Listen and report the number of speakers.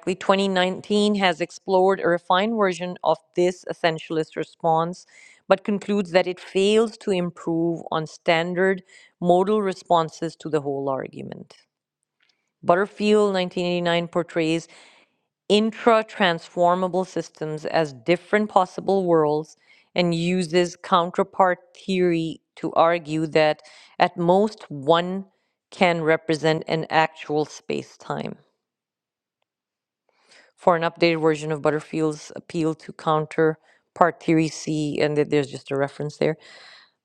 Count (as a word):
one